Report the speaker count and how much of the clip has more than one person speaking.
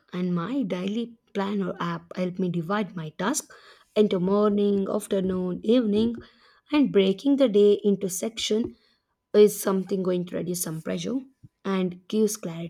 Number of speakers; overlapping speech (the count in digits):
1, no overlap